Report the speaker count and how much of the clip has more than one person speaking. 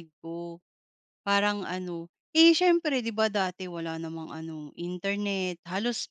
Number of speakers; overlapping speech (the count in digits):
1, no overlap